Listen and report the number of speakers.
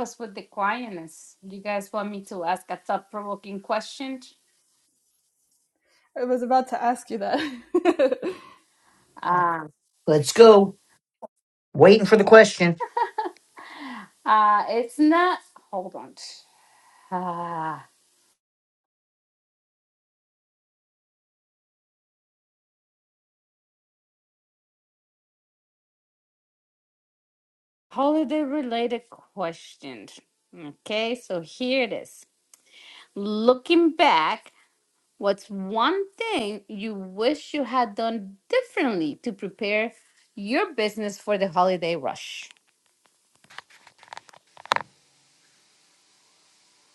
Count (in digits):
3